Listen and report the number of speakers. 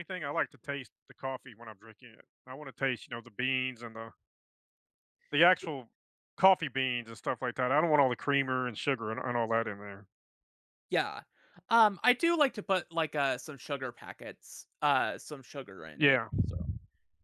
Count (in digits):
2